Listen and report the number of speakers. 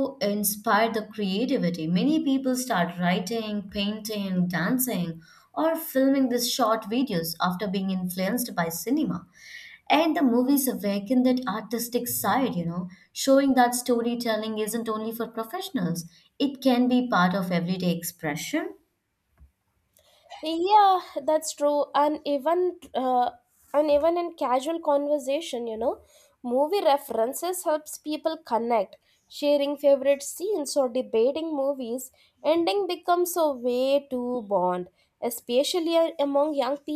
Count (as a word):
two